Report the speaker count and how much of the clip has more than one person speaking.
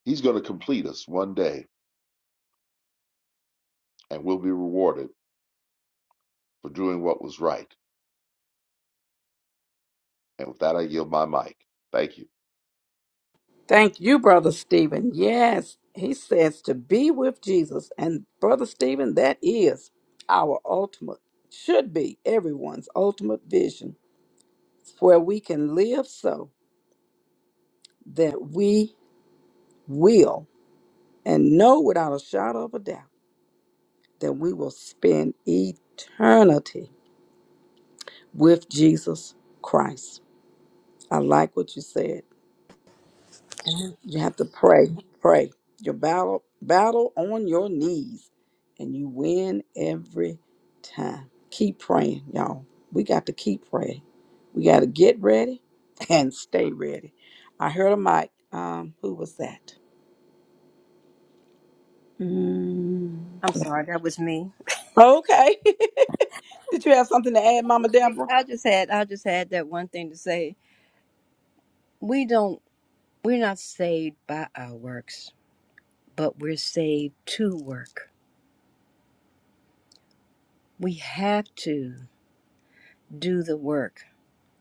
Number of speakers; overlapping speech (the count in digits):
3, about 1%